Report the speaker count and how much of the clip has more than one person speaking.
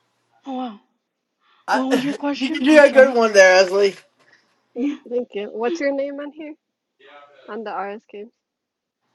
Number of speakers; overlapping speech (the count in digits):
3, about 9%